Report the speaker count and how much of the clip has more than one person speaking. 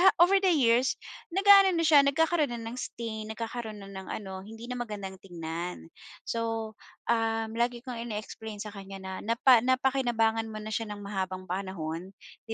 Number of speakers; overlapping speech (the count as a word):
one, no overlap